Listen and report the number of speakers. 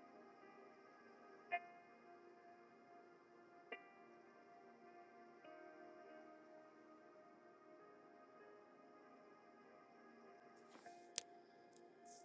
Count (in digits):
0